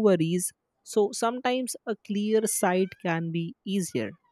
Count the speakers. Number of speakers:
1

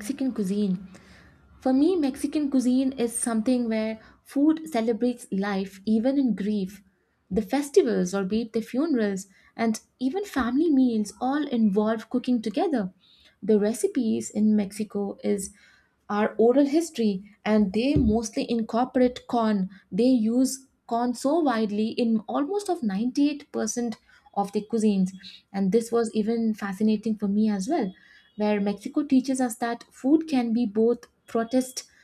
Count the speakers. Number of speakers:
1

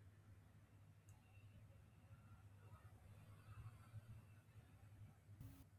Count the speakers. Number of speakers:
0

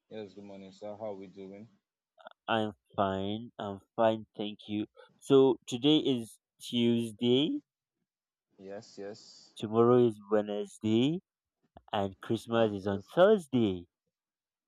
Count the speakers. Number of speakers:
2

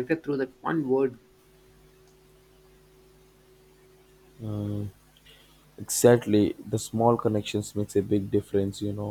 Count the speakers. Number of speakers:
2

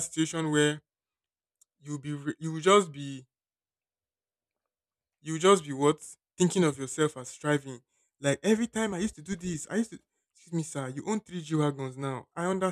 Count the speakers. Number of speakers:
1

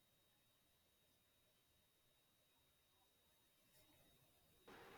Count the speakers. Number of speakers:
0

